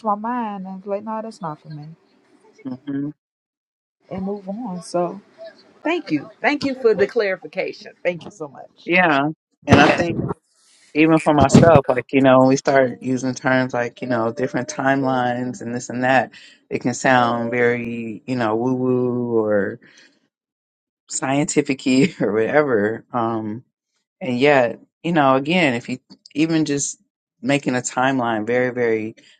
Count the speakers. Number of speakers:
2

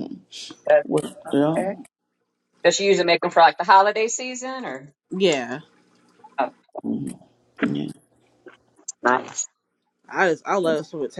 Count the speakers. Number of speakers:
3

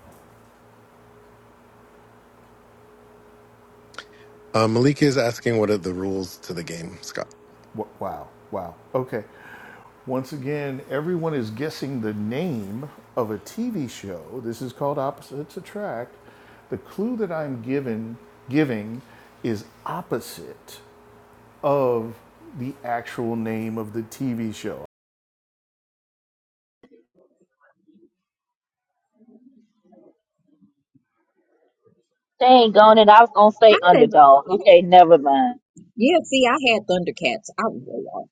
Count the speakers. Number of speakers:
4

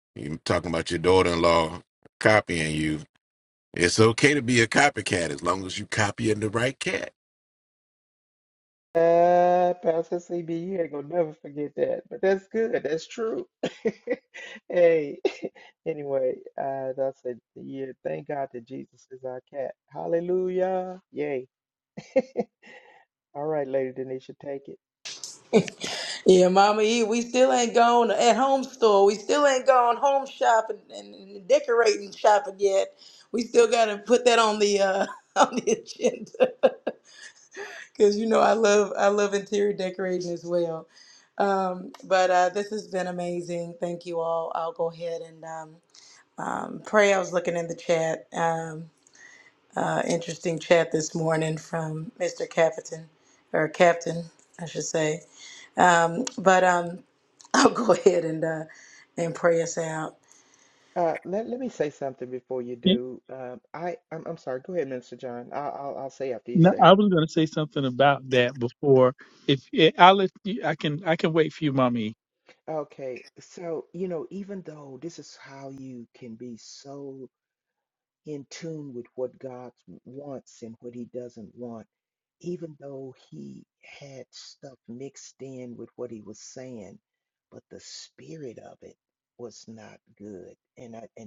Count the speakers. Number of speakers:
4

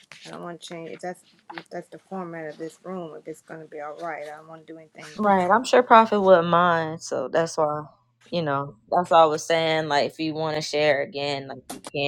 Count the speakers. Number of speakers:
2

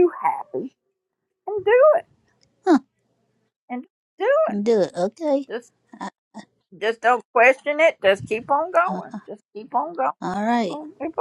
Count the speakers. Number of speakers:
2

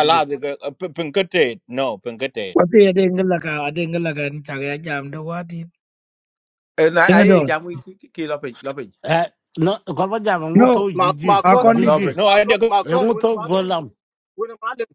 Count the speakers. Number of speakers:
5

